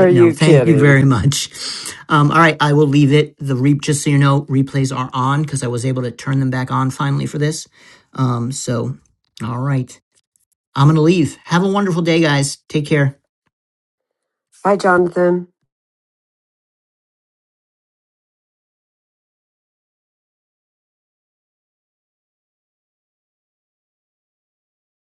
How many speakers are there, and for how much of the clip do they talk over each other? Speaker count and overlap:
two, about 4%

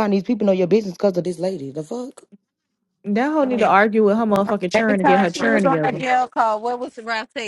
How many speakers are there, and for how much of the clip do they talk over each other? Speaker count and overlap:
three, about 21%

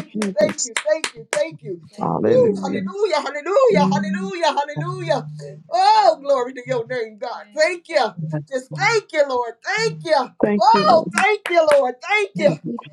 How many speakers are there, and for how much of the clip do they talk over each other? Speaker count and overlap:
two, about 22%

